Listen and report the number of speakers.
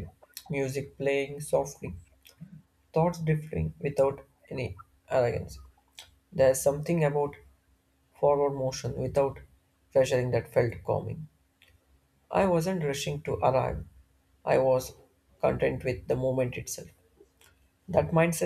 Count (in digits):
1